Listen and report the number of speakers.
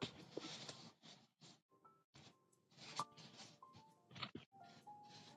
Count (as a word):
zero